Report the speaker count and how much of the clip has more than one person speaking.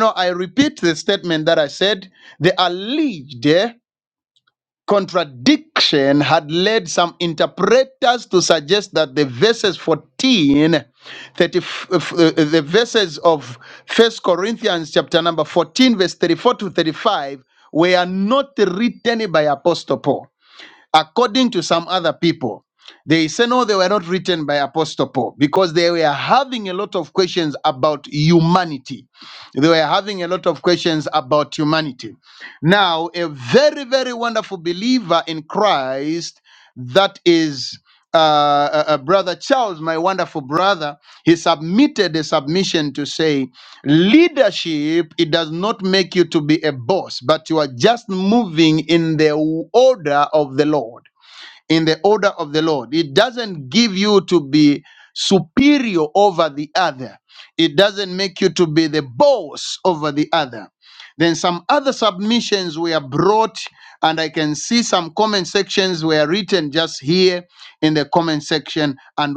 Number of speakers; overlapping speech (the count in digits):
1, no overlap